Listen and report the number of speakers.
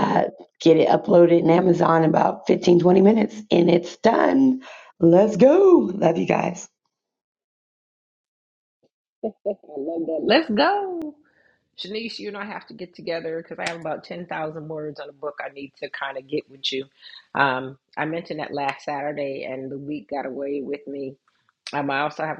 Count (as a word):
two